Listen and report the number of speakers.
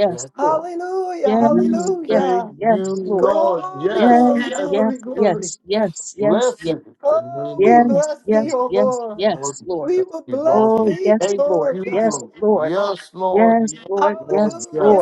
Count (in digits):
3